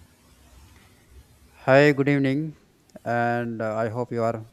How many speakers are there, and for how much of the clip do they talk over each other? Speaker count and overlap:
1, no overlap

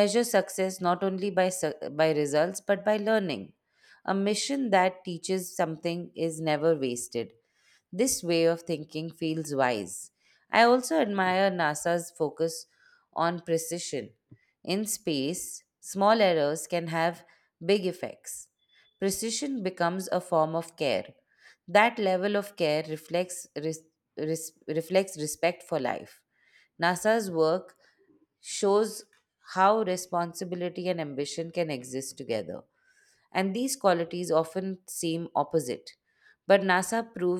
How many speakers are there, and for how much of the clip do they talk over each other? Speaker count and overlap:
1, no overlap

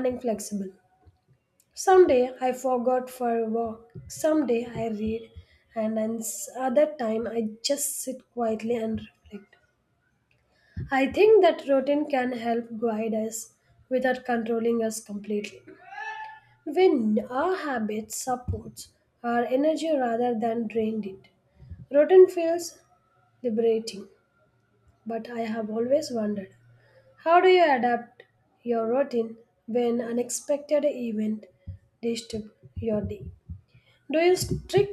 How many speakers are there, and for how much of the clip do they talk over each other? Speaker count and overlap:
1, no overlap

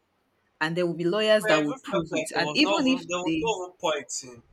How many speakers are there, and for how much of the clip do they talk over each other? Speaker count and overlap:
2, about 46%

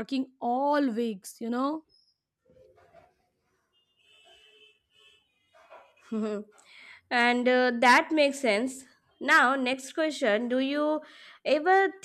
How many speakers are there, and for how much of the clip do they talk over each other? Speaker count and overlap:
2, no overlap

